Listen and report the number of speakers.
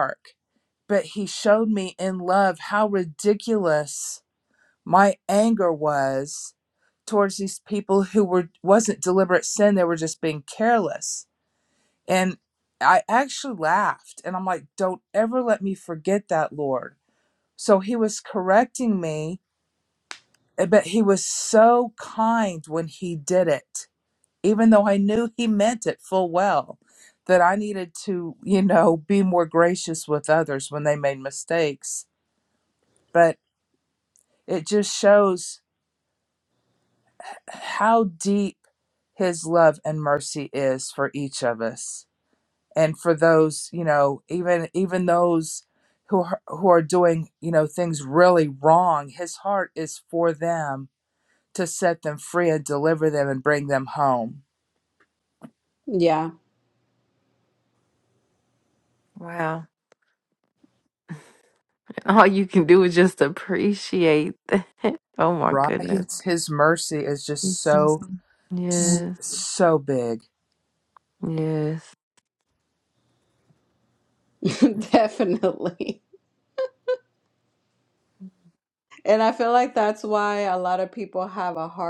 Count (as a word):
three